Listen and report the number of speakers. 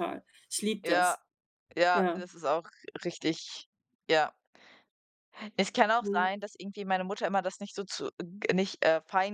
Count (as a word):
two